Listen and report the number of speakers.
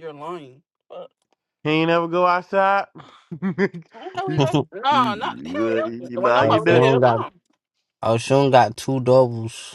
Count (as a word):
three